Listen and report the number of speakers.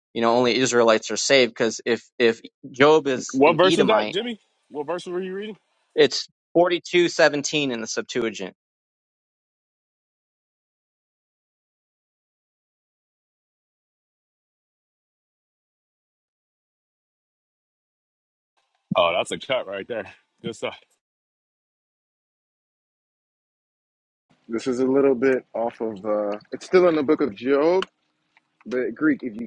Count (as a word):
three